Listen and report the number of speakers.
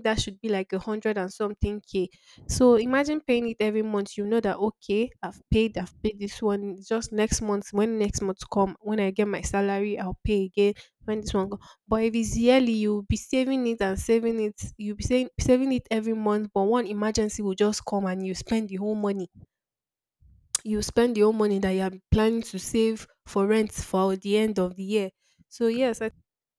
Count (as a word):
one